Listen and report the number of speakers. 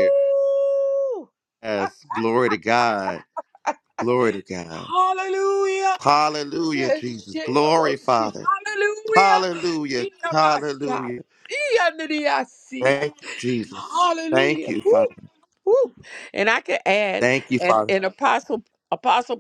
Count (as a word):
two